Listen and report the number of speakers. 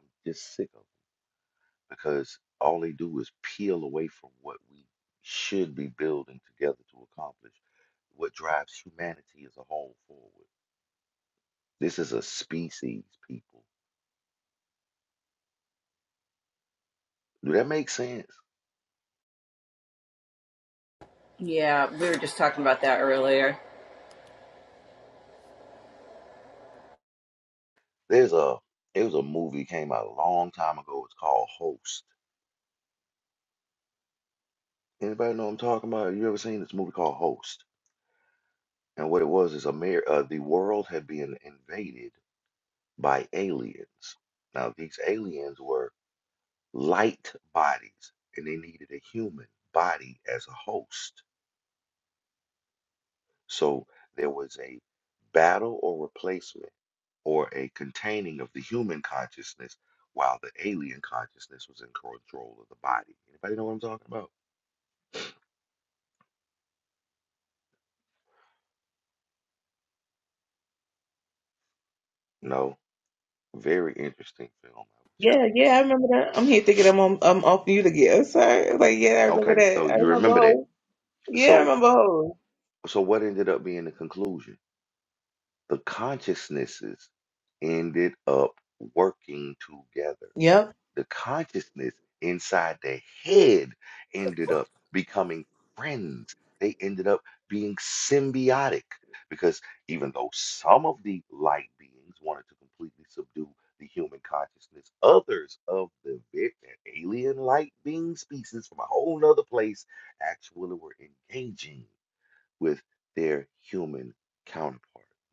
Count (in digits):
3